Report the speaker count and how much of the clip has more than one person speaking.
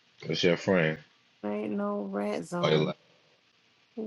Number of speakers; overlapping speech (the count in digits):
2, about 7%